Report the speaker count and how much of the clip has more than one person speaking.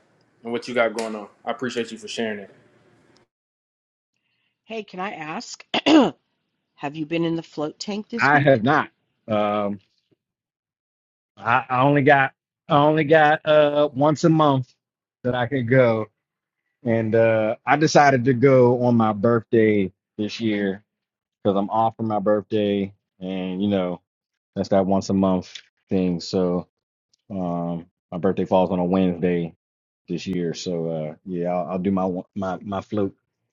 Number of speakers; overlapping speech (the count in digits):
3, about 1%